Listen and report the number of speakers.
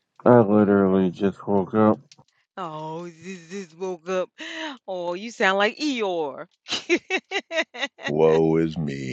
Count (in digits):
3